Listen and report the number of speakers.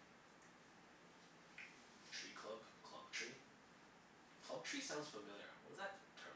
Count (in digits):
1